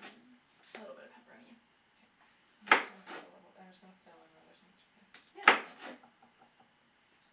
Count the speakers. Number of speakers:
2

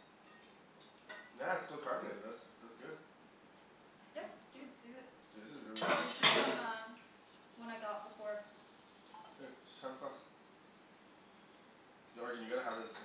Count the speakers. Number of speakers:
2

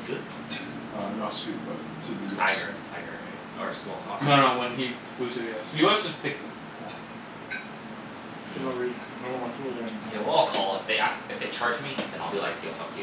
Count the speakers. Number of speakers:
4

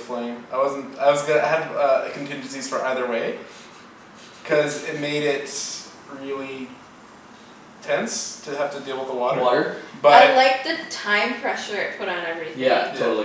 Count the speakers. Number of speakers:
3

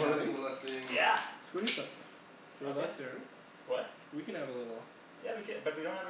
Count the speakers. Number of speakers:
3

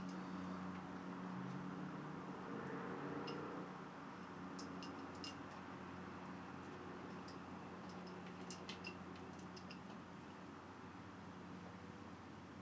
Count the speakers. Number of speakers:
0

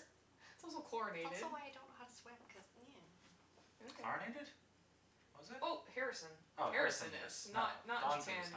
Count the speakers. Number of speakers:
3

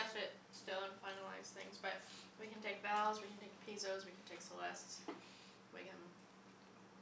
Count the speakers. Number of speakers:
1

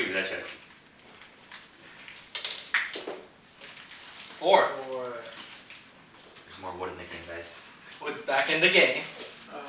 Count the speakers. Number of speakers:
3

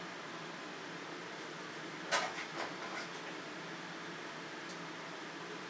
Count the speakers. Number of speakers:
0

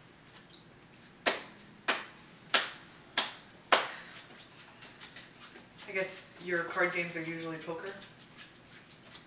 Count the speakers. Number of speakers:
1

